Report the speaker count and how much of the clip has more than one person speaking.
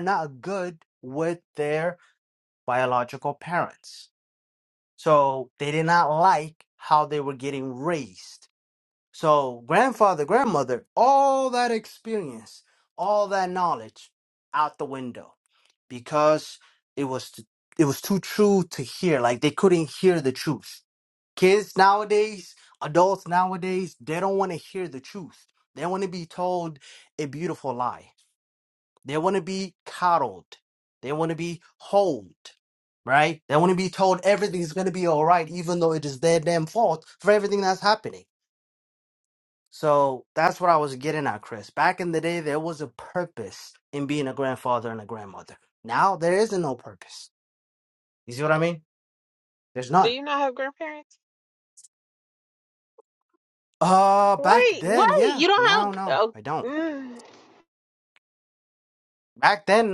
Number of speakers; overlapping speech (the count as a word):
two, about 4%